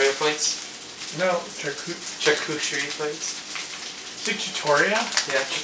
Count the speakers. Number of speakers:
2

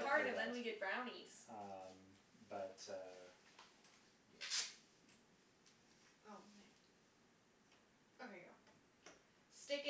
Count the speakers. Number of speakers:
3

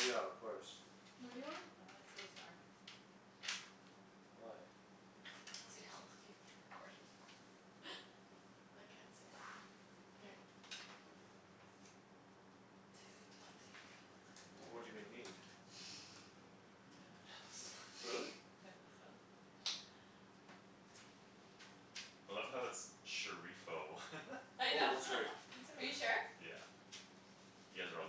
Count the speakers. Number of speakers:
4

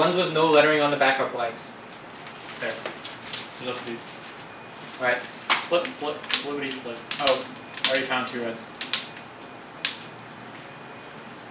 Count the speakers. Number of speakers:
2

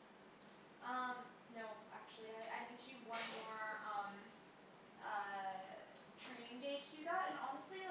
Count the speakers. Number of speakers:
1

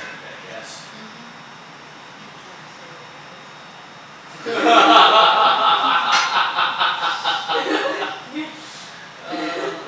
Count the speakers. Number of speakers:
1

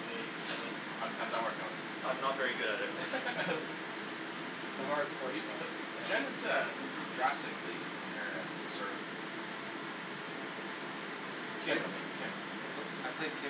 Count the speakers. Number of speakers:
3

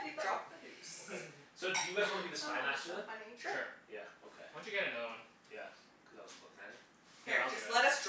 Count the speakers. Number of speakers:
4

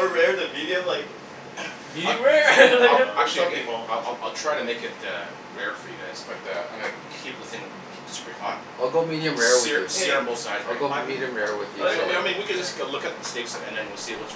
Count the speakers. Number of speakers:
4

